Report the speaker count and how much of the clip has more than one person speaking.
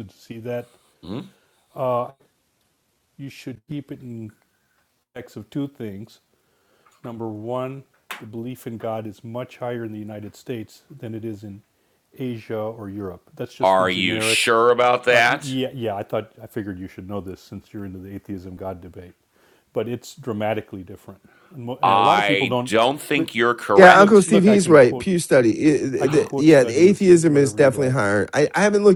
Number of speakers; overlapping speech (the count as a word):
three, about 19%